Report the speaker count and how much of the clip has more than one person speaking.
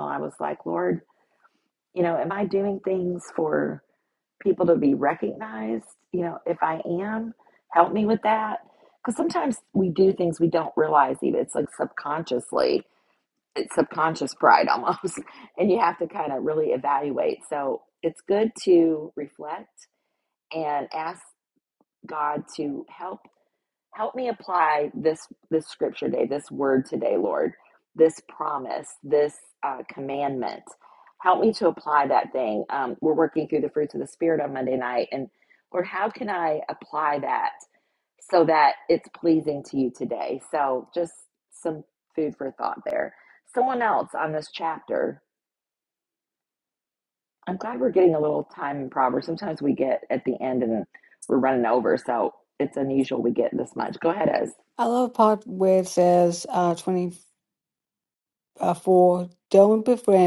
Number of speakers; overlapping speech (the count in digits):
2, no overlap